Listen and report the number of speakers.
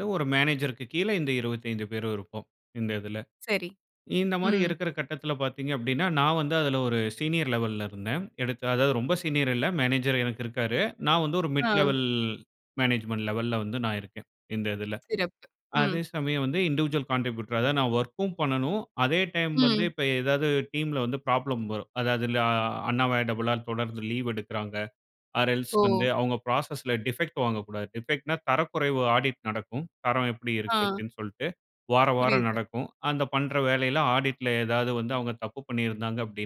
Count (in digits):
2